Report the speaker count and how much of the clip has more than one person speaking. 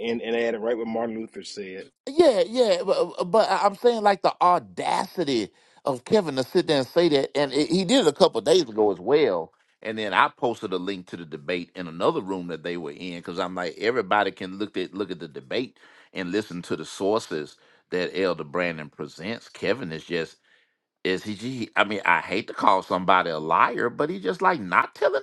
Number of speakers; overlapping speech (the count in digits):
2, no overlap